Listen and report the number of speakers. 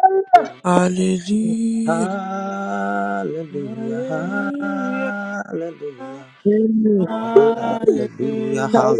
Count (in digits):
3